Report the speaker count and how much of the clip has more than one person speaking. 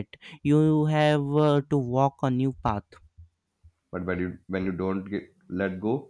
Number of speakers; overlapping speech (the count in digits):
2, no overlap